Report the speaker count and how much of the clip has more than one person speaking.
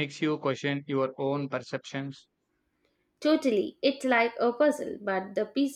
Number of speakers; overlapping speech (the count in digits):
2, no overlap